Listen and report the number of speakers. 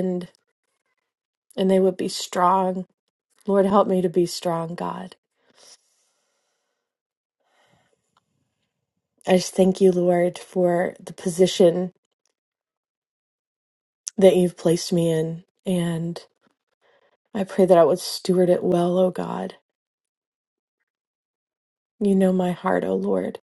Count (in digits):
1